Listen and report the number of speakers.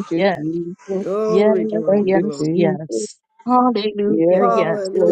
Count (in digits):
3